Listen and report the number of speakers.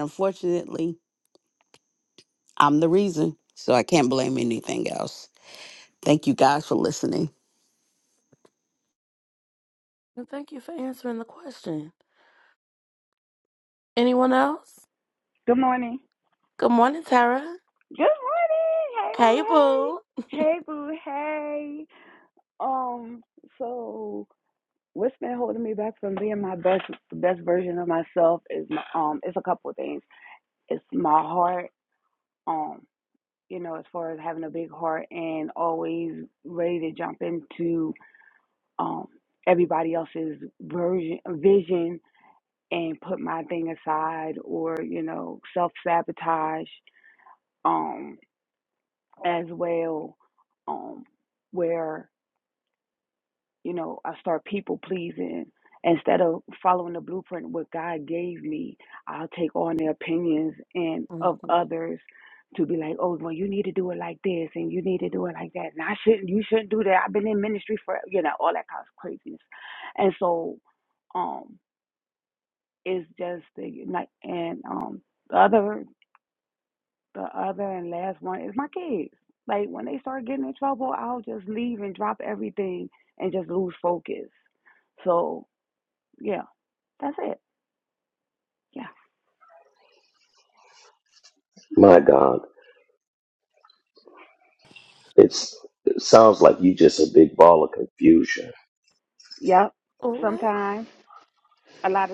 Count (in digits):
4